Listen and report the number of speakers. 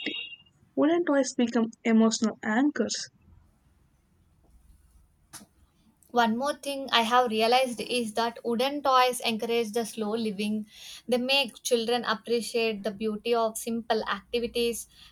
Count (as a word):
two